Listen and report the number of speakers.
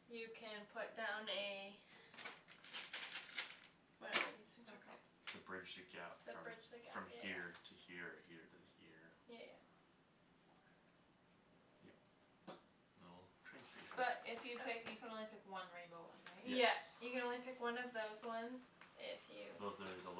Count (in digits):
3